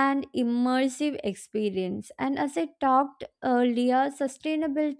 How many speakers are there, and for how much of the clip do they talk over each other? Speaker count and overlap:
one, no overlap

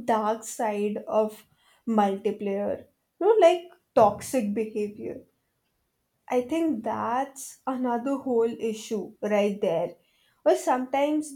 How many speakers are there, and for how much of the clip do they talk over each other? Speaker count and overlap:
one, no overlap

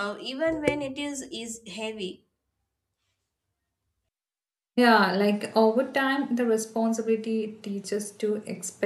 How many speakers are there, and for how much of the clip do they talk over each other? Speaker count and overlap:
two, no overlap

